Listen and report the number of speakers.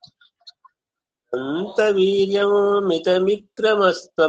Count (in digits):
1